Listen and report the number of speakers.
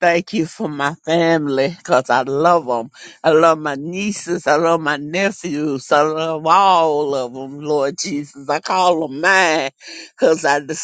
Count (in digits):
1